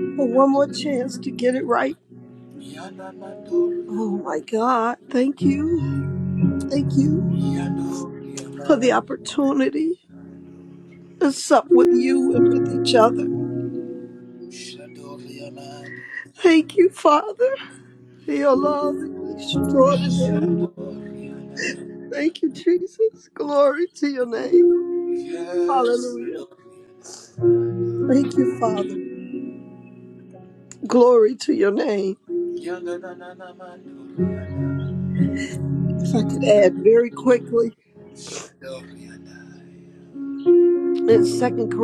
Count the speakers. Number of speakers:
2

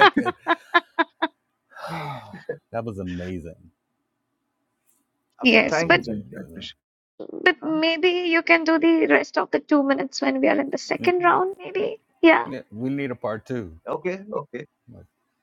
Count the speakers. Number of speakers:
3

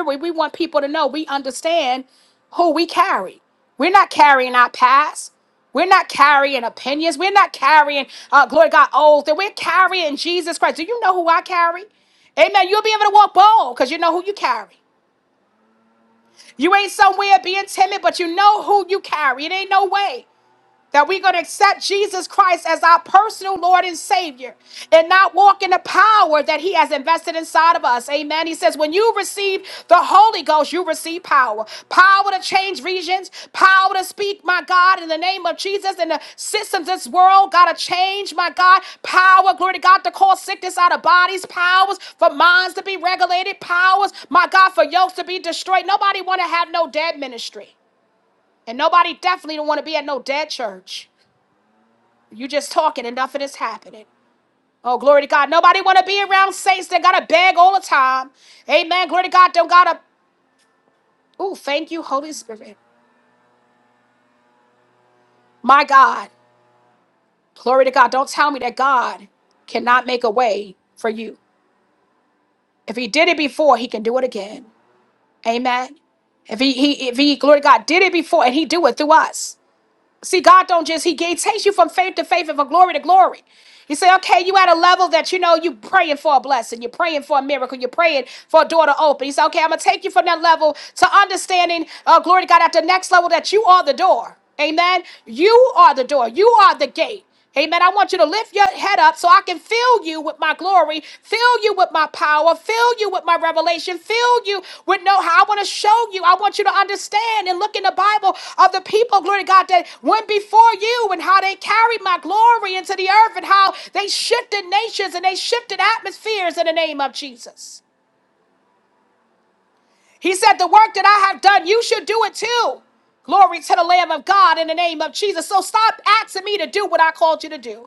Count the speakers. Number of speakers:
1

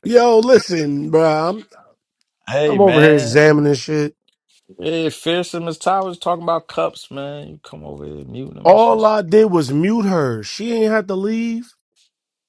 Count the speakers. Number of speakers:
2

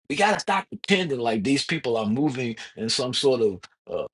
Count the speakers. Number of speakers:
1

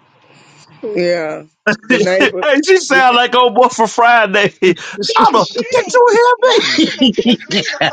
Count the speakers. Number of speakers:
3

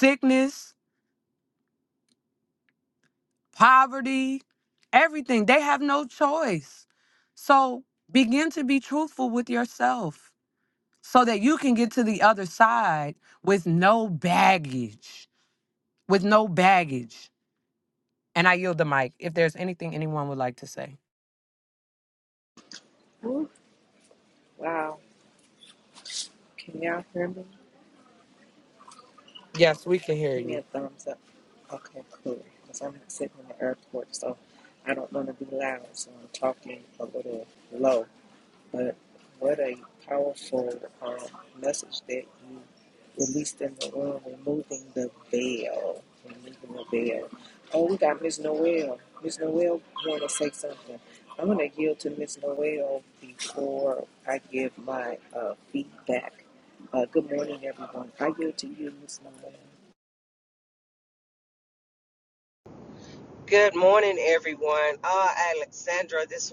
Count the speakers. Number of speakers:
3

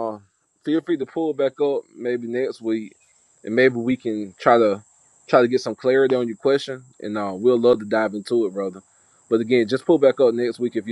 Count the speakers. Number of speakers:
1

